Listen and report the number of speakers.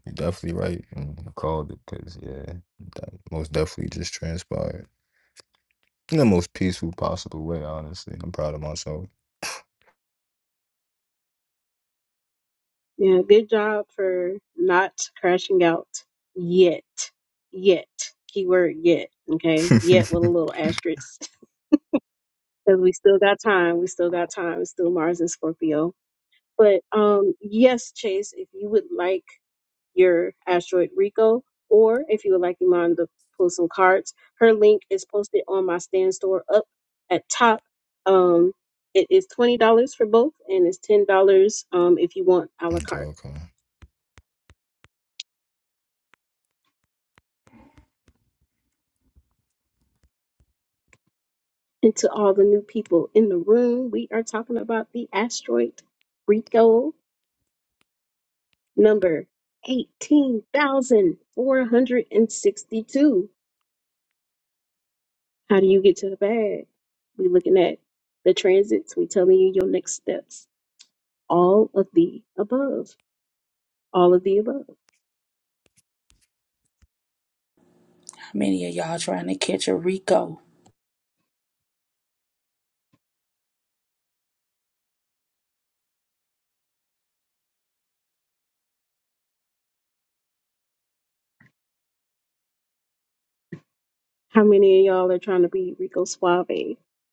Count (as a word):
three